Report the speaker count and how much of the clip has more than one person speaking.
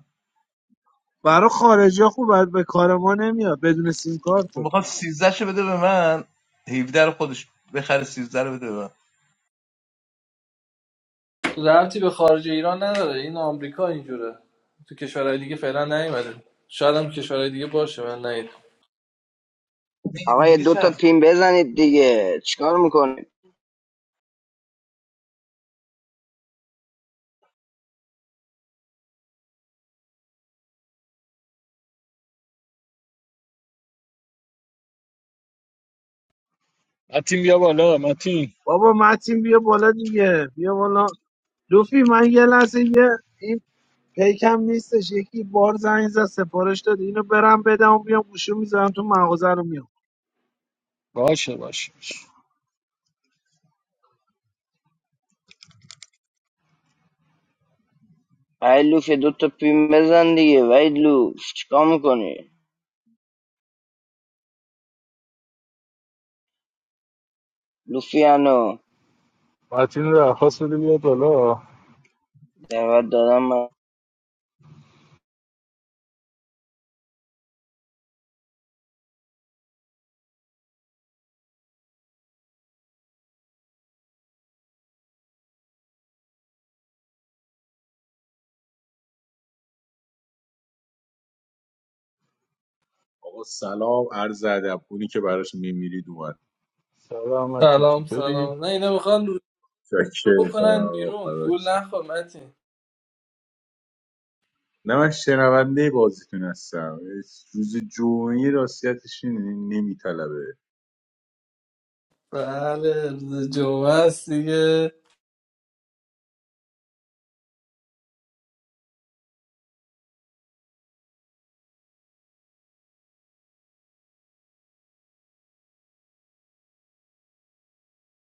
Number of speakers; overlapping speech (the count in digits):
6, about 3%